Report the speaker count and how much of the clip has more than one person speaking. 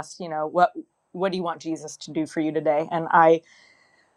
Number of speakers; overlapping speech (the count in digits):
1, no overlap